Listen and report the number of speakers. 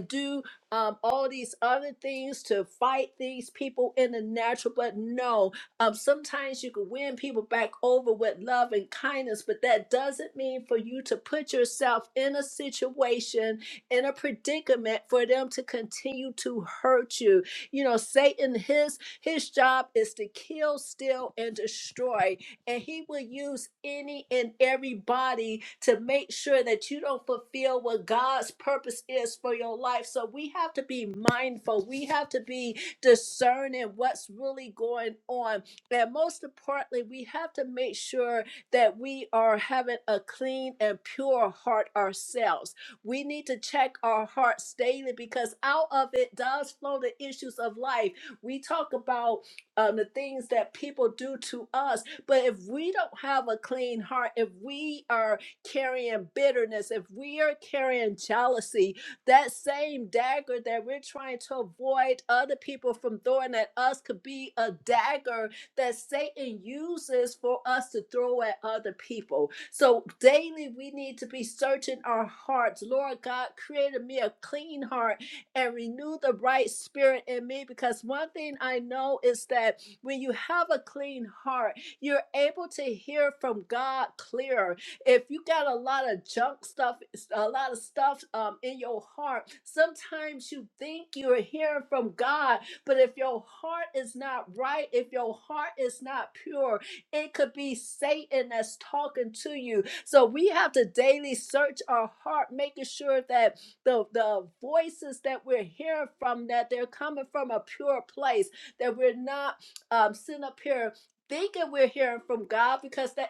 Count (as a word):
one